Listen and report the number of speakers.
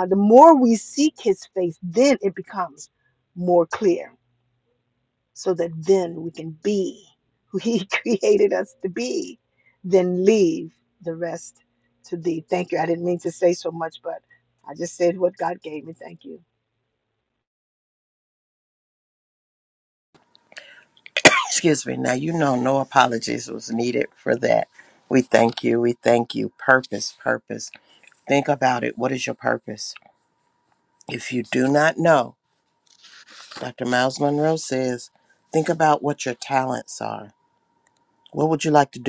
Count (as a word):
two